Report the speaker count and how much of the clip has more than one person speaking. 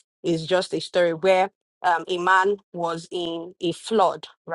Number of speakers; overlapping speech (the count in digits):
1, no overlap